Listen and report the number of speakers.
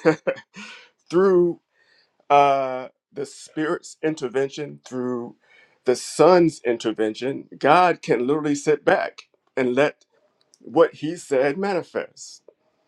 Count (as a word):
one